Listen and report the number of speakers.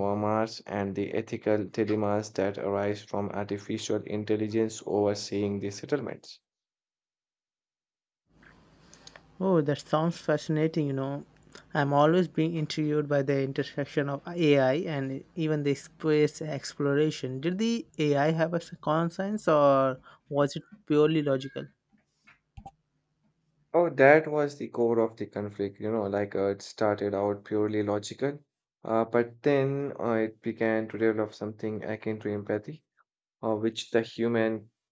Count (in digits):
2